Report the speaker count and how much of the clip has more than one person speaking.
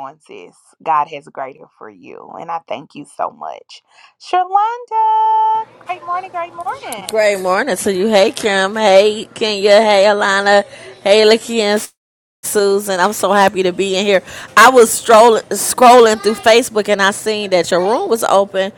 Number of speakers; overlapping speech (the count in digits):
2, under 1%